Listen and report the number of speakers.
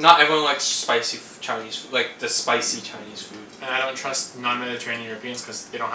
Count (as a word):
two